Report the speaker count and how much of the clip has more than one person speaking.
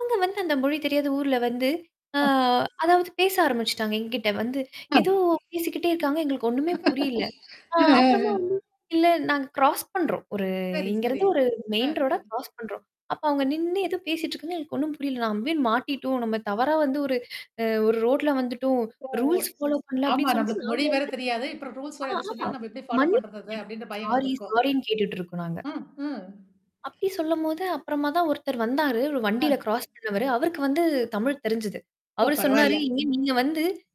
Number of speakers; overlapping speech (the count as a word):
two, about 13%